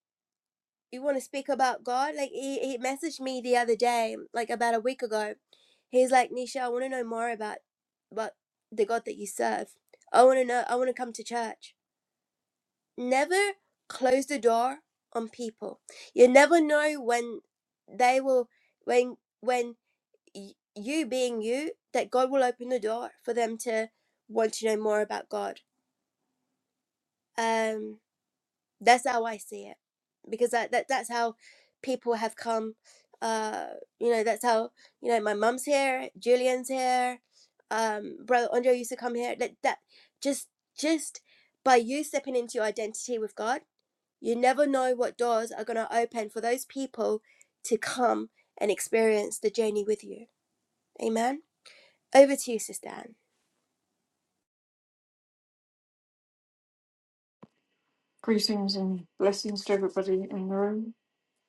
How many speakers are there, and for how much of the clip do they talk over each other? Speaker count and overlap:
2, no overlap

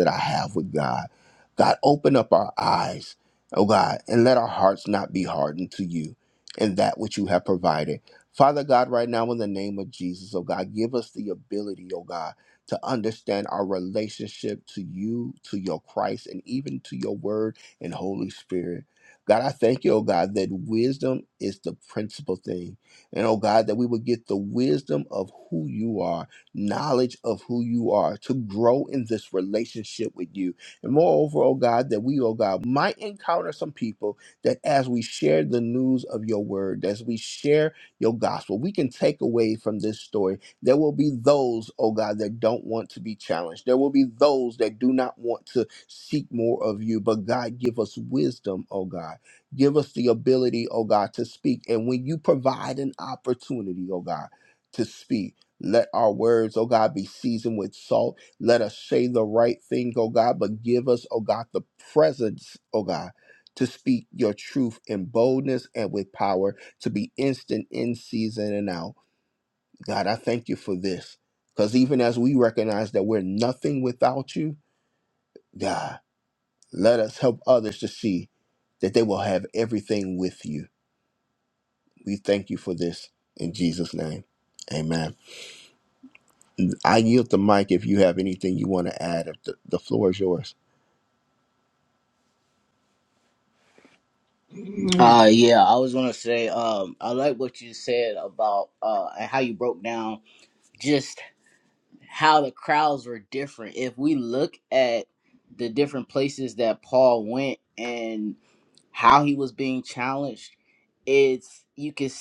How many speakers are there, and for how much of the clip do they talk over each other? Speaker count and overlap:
2, no overlap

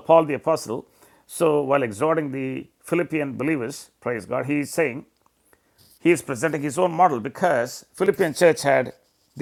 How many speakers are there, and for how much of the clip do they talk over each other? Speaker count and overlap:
1, no overlap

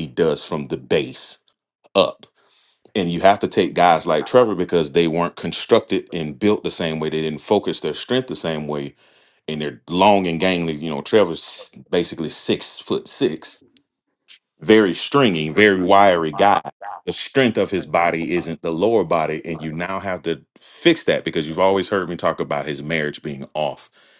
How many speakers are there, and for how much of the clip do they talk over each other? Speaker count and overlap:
1, no overlap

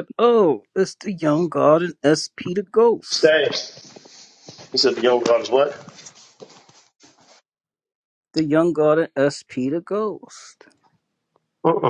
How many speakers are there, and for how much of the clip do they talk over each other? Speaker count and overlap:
2, about 1%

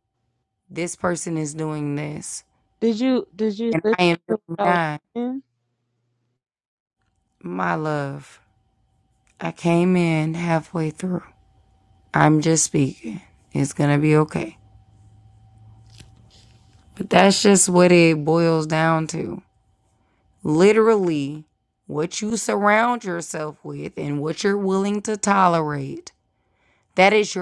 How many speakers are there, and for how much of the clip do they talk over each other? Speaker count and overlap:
2, about 3%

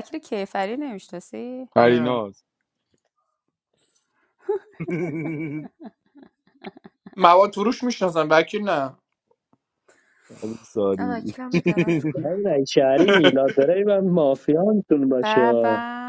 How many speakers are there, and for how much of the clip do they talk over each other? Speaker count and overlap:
4, about 9%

